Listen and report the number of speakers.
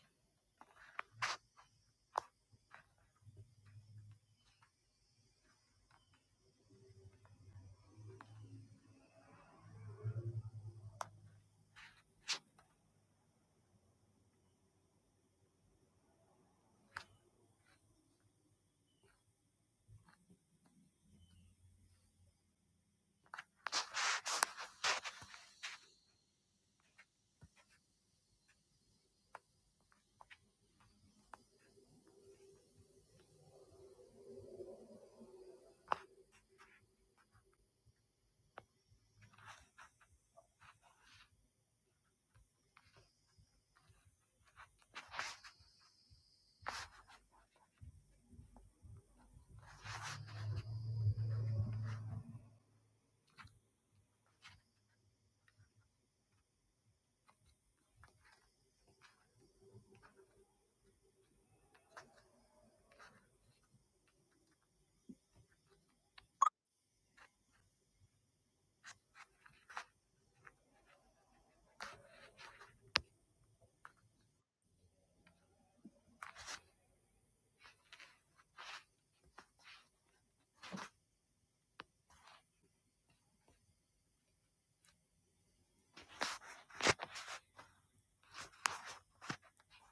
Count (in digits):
0